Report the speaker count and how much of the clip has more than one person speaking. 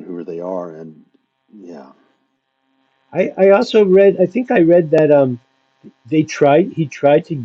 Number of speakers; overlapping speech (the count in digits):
2, no overlap